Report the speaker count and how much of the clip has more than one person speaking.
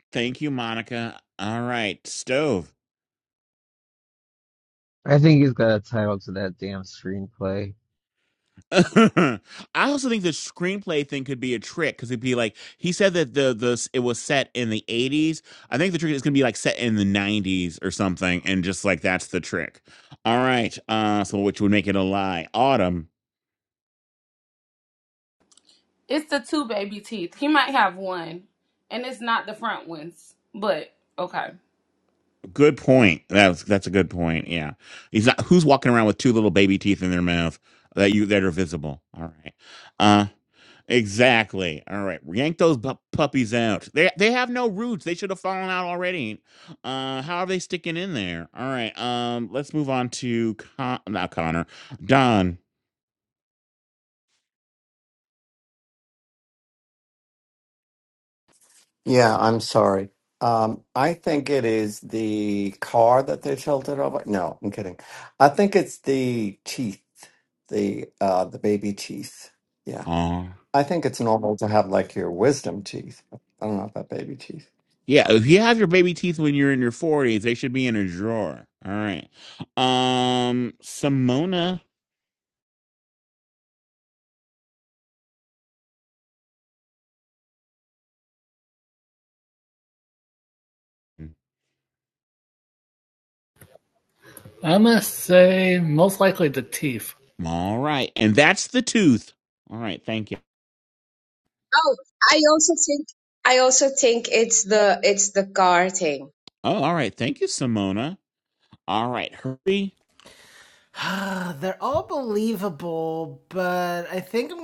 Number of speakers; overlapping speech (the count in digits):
7, under 1%